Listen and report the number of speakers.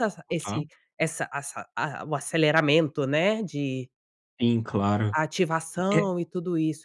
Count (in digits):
2